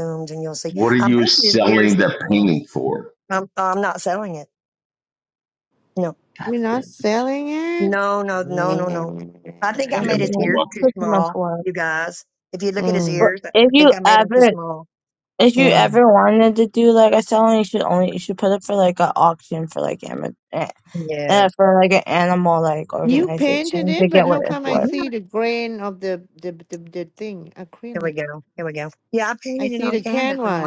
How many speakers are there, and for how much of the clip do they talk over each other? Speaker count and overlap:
four, about 32%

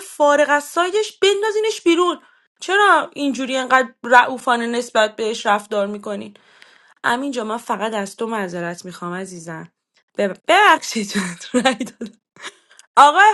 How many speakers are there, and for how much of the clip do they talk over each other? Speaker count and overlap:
one, no overlap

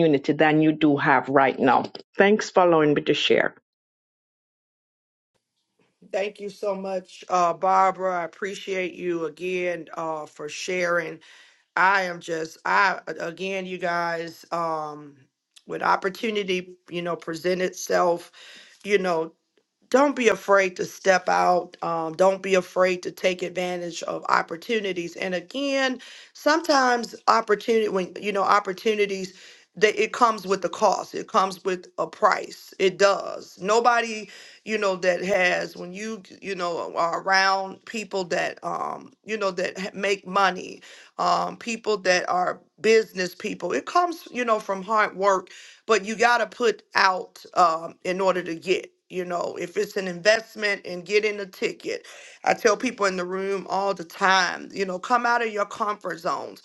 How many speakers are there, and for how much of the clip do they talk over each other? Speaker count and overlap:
two, no overlap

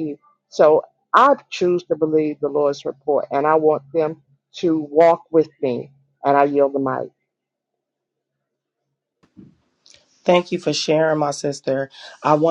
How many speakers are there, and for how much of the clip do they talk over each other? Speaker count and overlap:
two, no overlap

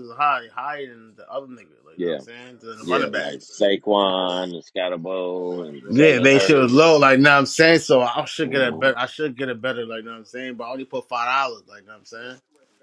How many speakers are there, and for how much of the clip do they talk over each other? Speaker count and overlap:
two, about 18%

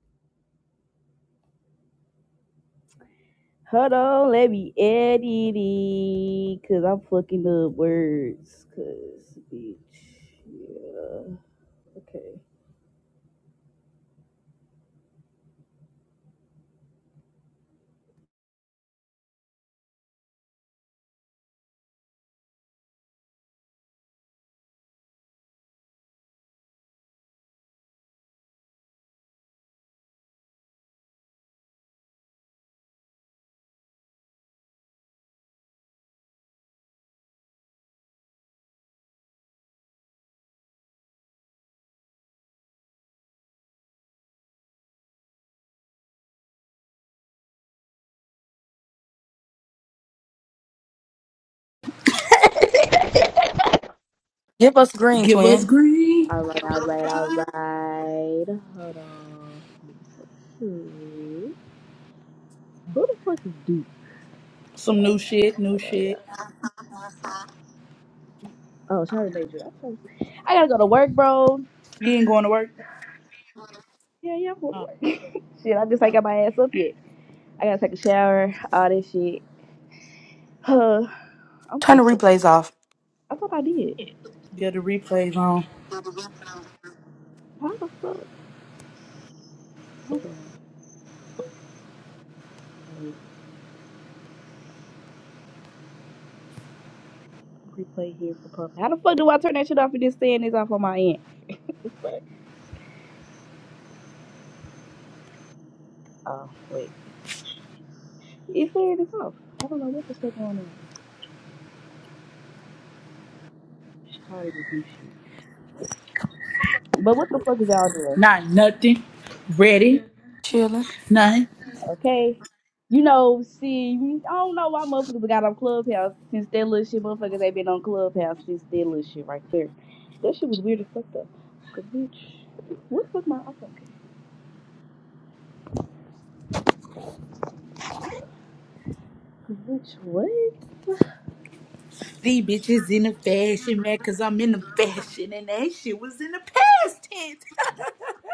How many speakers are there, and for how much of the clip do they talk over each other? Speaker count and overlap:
three, about 1%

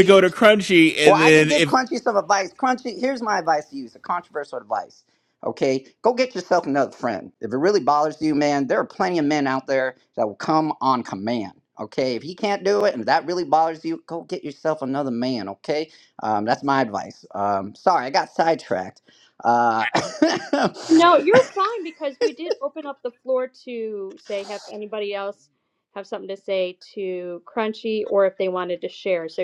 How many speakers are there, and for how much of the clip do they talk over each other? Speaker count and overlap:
three, about 2%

